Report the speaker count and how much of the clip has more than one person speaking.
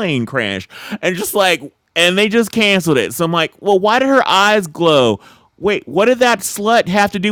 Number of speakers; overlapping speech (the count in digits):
1, no overlap